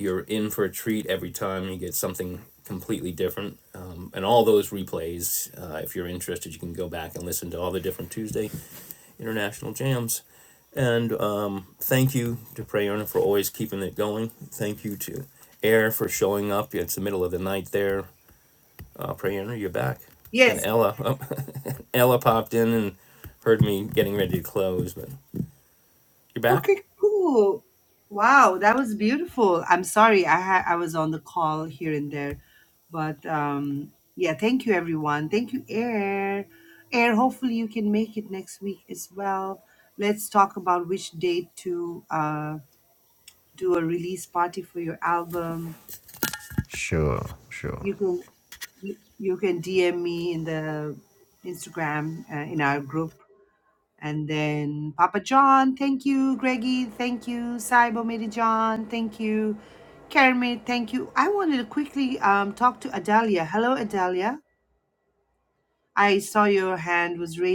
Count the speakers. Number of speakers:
3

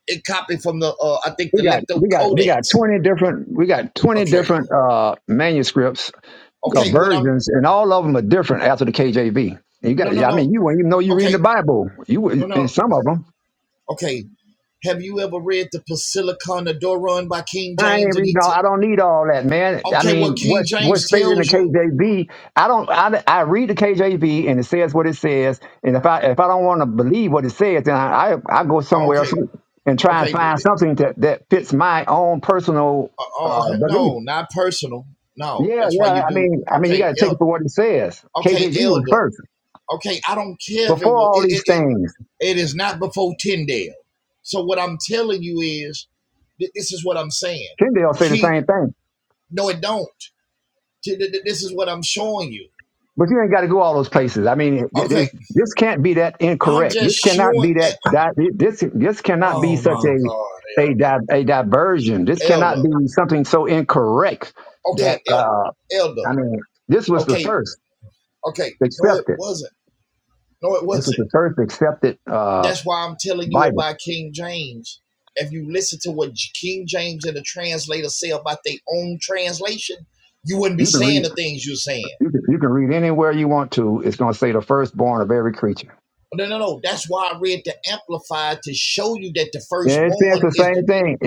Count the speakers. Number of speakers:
2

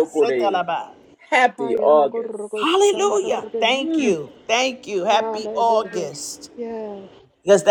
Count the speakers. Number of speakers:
3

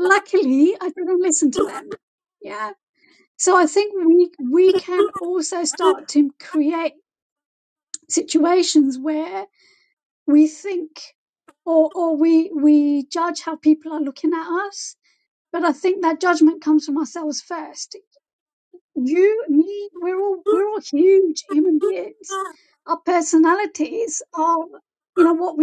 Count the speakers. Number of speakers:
1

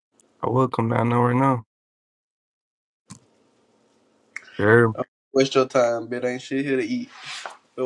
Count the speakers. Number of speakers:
2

